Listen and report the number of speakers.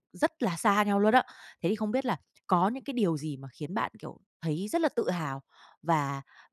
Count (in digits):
1